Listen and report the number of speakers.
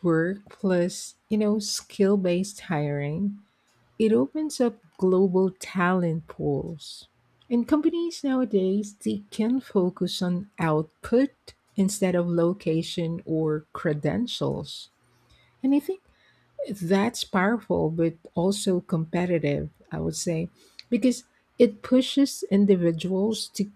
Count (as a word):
one